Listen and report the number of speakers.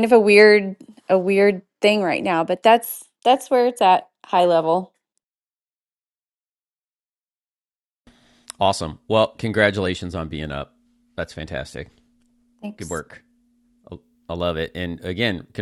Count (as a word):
two